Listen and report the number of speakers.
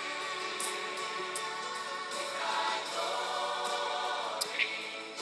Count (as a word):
zero